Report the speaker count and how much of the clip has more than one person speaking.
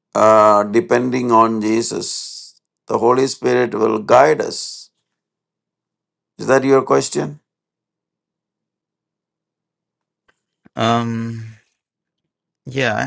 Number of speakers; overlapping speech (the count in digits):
2, no overlap